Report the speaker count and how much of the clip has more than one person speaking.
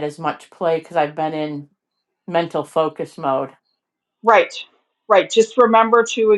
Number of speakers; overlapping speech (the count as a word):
two, no overlap